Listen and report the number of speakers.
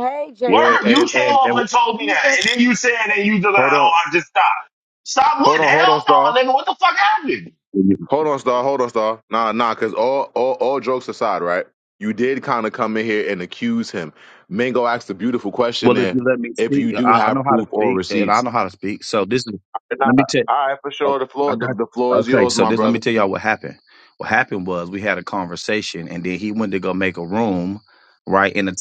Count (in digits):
4